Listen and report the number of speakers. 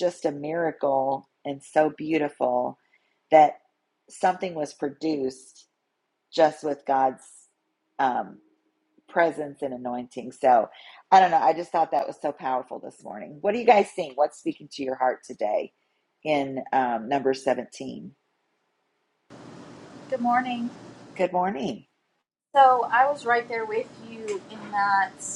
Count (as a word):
two